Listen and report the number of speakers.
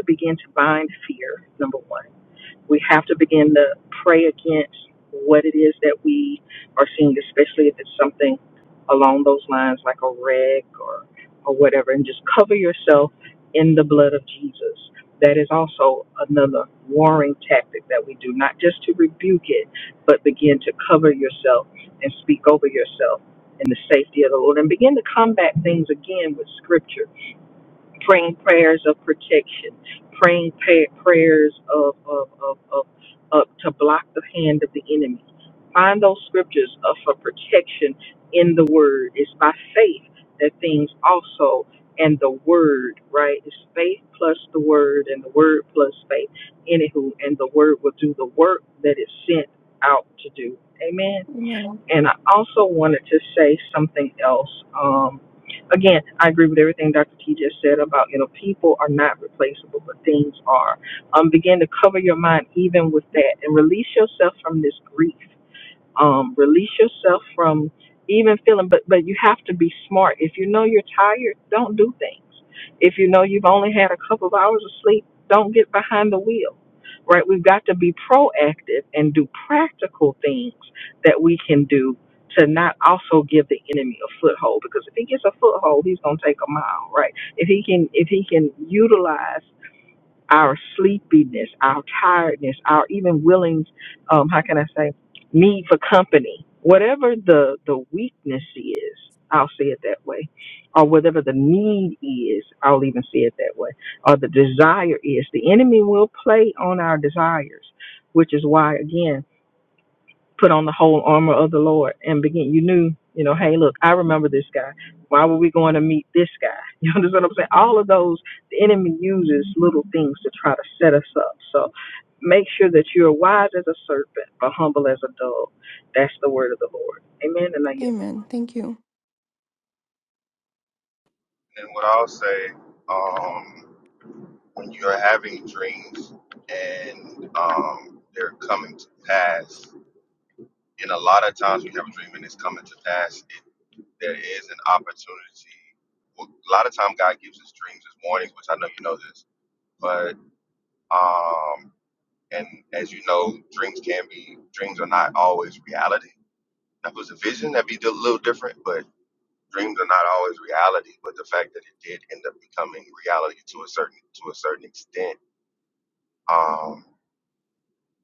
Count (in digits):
3